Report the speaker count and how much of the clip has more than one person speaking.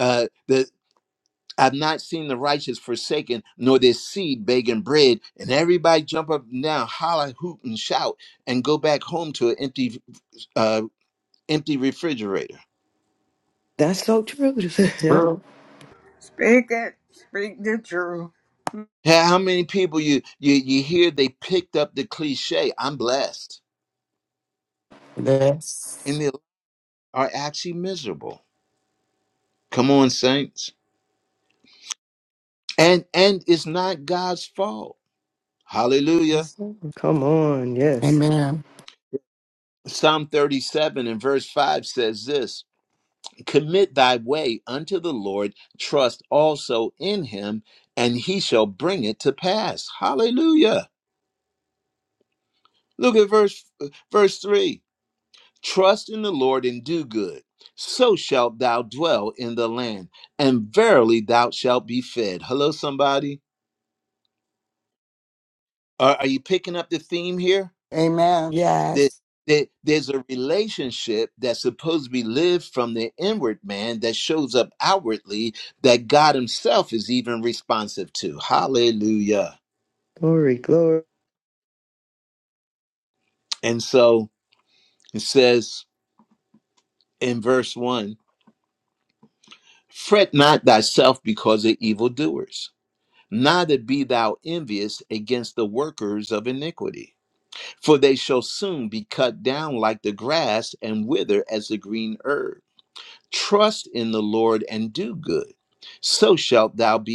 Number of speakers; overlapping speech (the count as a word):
five, about 1%